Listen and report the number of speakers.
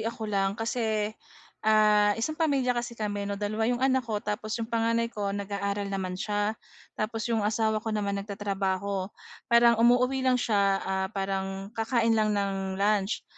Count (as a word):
one